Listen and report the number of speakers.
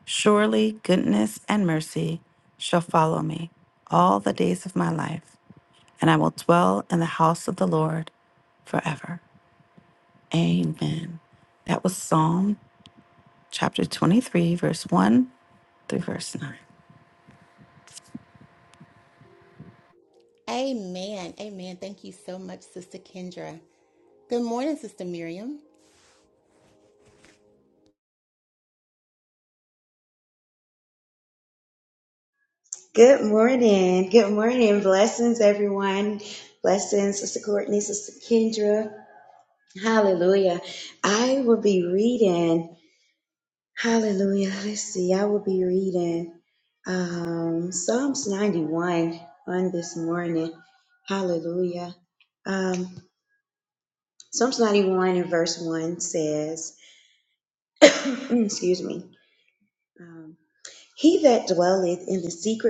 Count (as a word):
three